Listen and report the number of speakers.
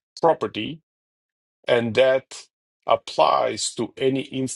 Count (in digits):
1